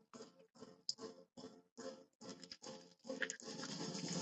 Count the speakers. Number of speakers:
0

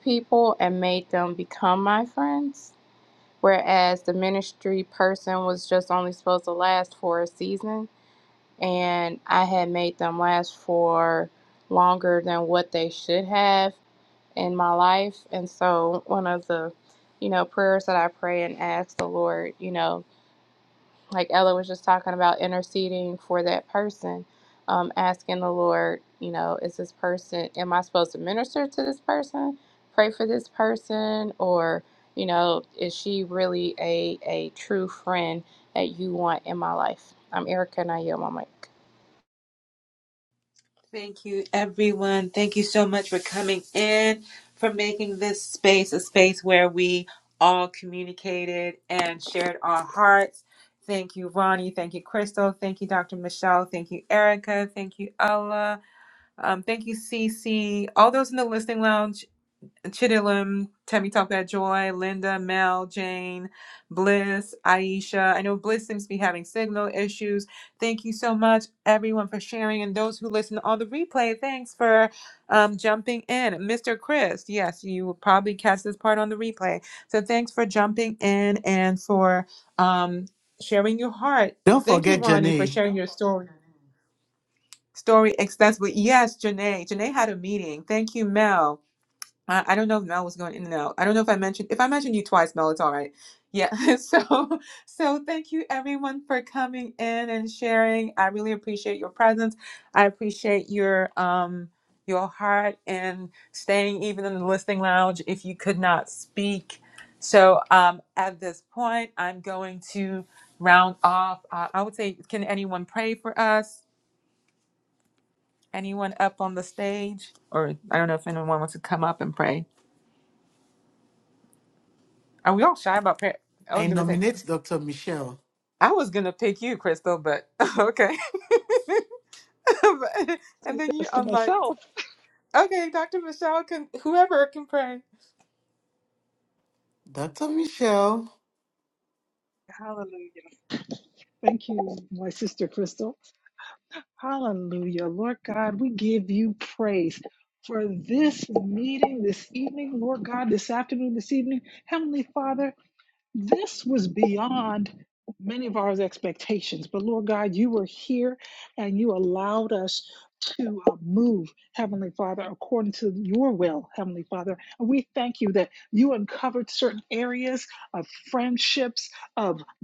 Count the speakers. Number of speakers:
4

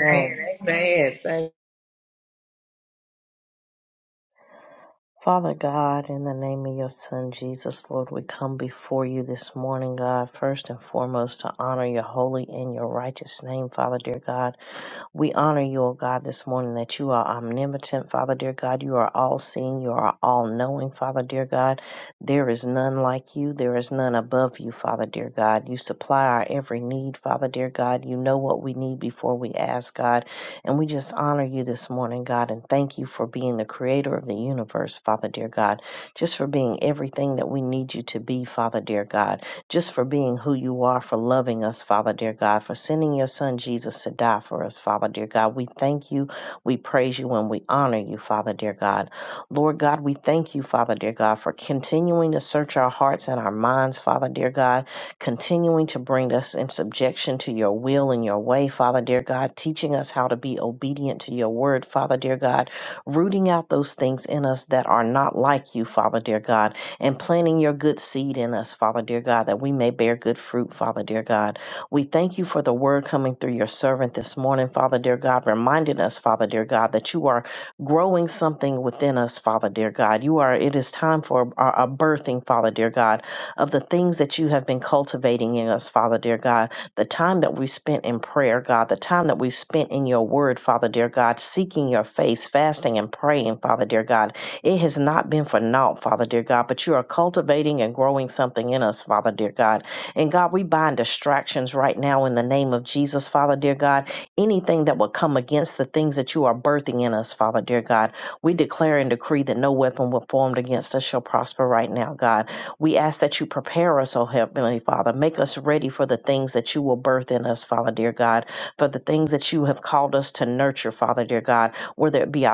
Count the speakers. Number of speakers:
2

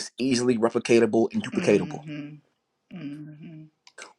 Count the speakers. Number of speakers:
2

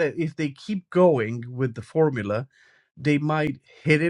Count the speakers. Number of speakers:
1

